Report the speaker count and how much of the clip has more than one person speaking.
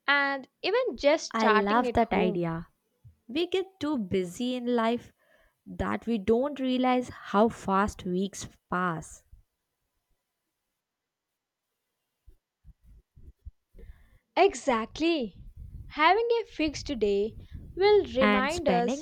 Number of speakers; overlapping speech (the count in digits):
2, about 9%